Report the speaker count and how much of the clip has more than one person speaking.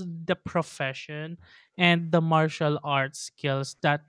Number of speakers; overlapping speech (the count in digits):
1, no overlap